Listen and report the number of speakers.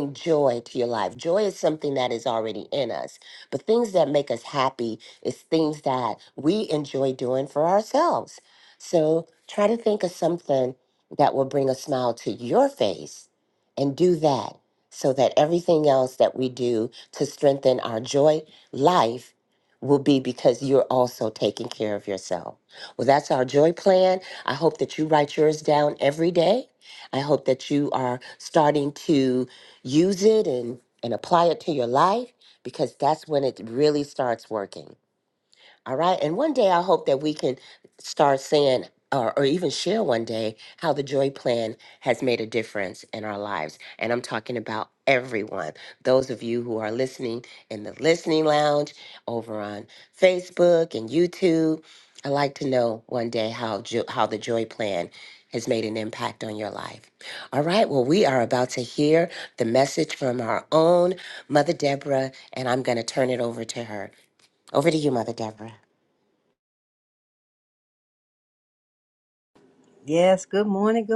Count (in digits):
2